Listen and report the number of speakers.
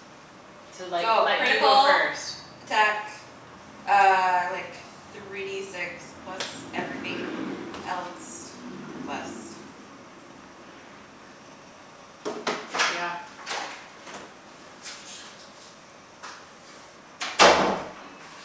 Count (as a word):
two